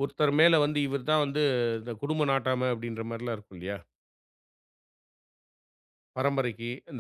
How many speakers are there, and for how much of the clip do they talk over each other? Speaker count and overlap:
1, no overlap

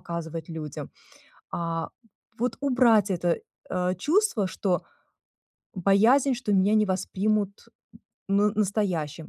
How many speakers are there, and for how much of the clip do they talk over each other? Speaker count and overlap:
1, no overlap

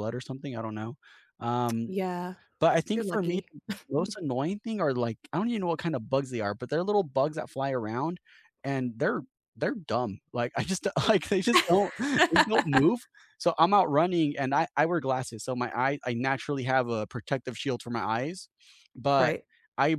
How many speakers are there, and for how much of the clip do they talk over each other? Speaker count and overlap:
2, about 3%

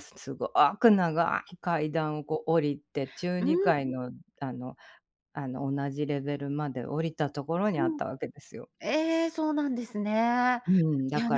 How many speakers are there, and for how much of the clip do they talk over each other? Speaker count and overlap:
2, about 7%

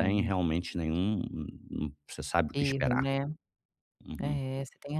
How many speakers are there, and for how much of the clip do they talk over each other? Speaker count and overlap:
2, about 20%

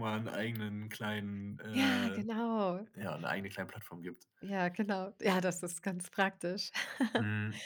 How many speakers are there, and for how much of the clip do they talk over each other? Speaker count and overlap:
2, about 6%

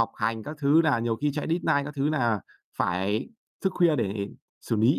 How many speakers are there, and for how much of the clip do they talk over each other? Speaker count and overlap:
1, no overlap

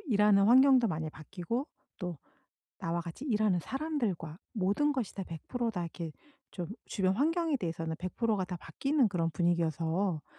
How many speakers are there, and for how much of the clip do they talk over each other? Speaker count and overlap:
1, no overlap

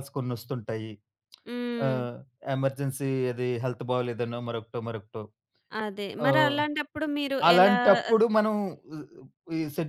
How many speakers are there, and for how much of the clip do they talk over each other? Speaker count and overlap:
2, about 11%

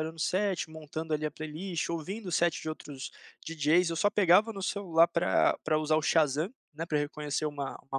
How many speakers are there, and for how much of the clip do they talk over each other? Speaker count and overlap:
1, no overlap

